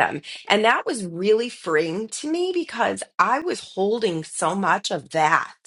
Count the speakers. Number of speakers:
one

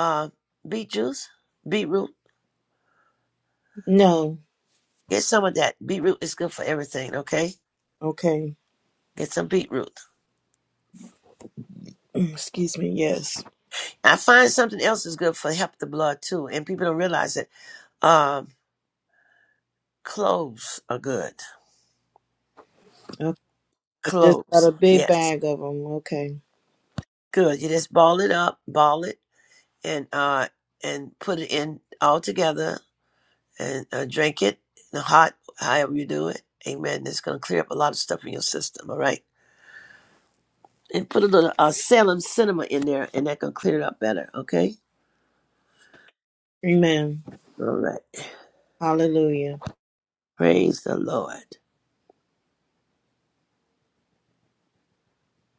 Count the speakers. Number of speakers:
two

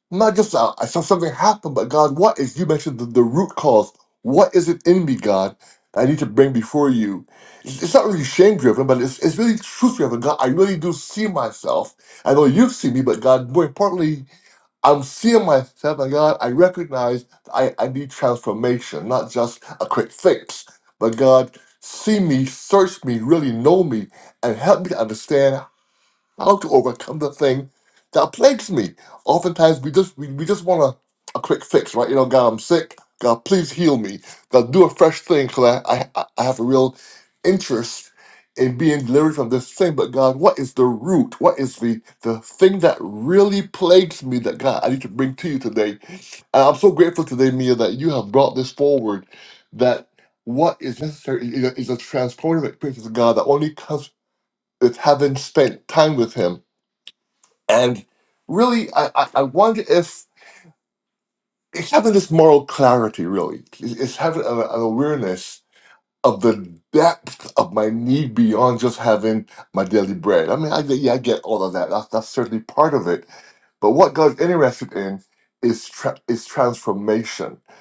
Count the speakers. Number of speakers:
one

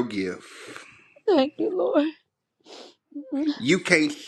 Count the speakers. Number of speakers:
two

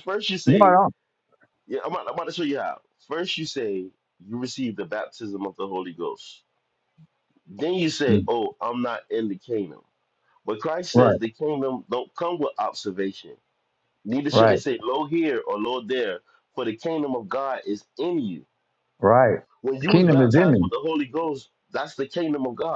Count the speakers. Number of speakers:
two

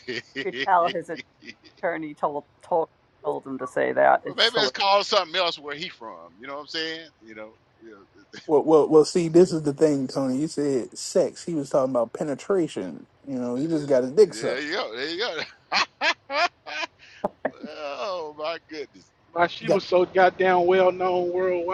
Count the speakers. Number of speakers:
four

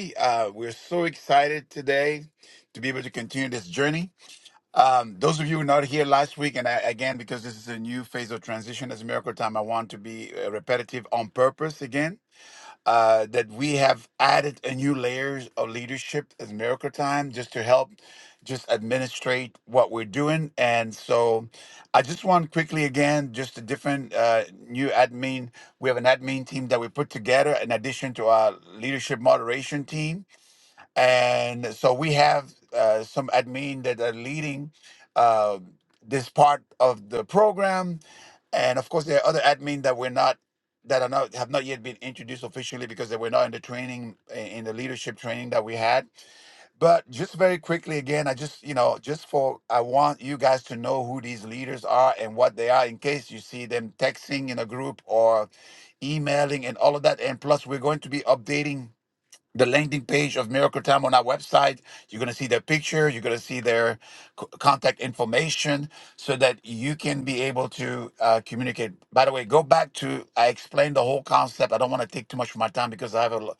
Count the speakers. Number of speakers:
one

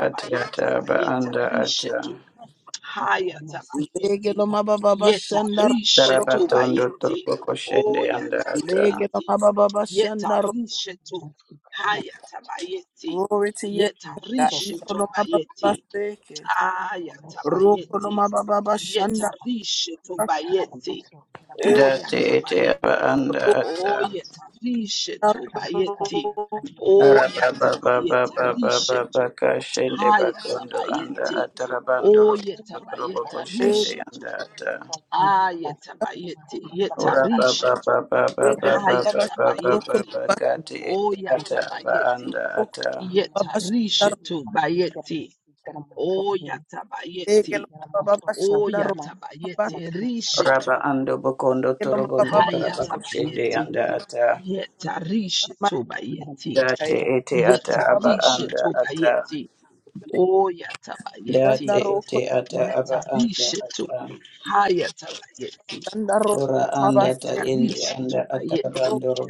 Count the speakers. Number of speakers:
three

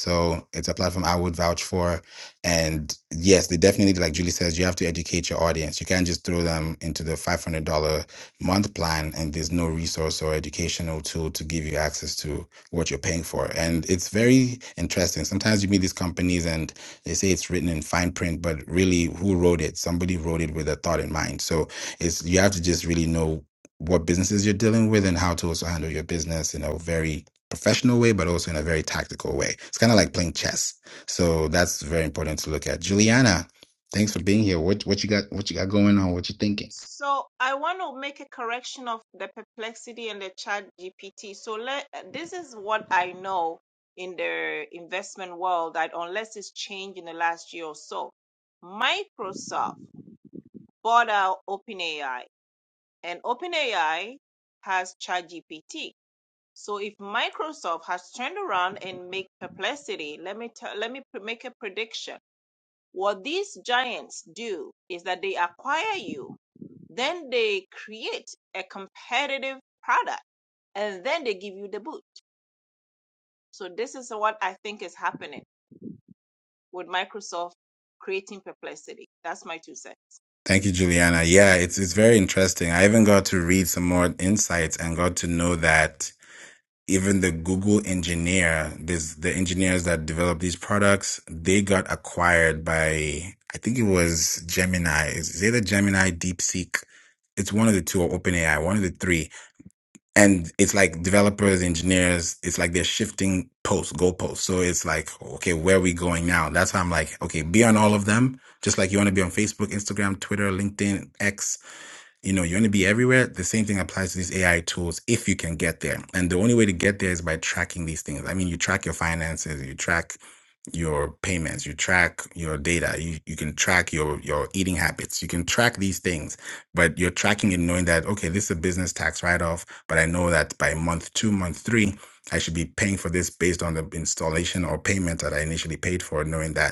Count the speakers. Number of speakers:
two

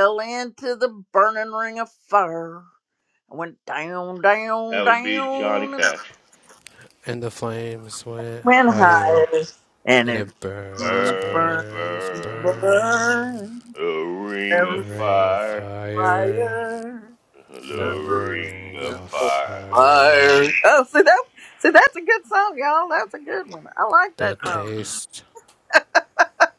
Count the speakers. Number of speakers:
three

